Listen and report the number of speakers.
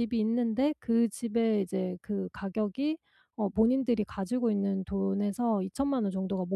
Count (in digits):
1